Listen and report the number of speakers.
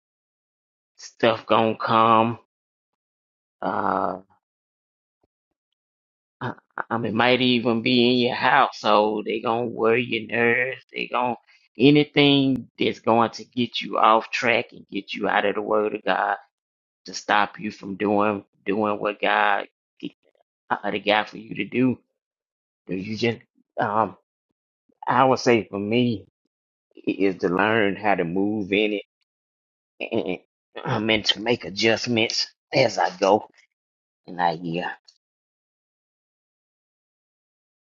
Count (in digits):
1